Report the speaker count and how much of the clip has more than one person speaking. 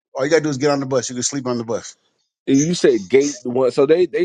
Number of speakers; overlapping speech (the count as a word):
two, no overlap